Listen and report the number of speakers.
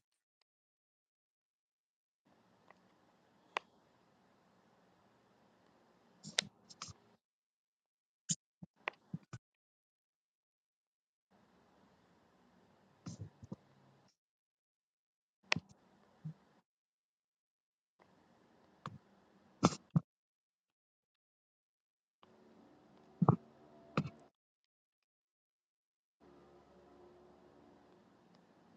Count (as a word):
zero